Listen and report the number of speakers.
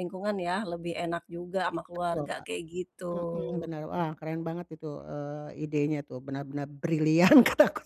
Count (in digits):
2